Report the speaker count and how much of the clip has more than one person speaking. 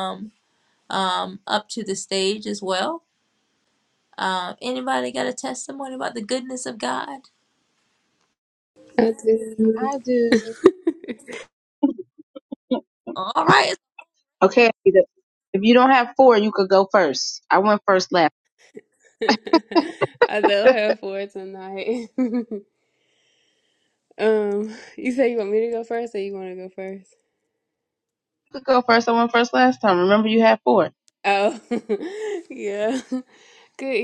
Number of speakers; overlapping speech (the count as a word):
three, about 1%